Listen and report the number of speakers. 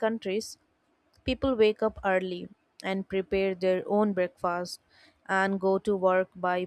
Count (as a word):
one